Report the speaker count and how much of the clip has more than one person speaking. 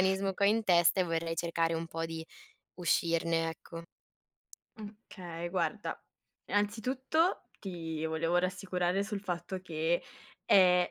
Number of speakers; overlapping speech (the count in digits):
2, no overlap